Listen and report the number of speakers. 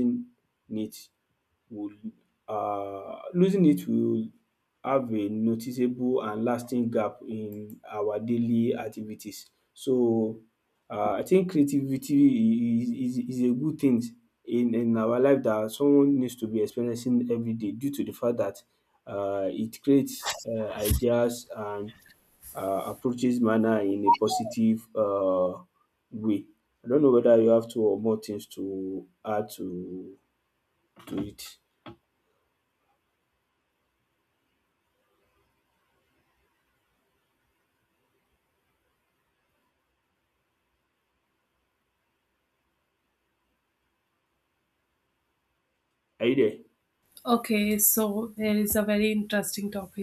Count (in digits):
2